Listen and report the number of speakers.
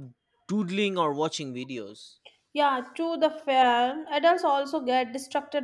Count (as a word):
two